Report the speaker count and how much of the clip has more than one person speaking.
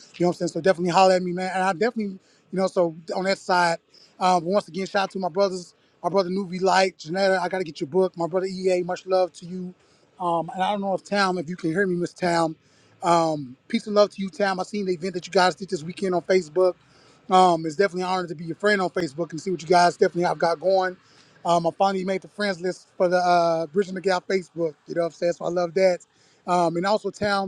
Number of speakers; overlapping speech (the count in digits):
1, no overlap